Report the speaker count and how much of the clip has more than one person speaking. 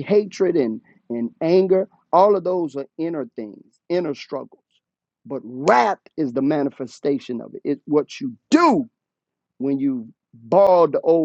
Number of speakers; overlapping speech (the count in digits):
1, no overlap